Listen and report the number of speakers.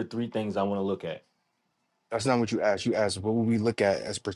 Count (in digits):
2